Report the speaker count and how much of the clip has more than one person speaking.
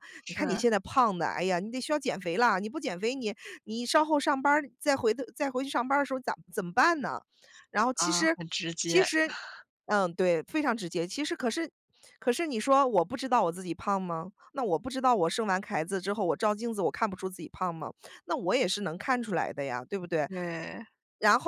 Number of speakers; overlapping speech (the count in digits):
2, about 4%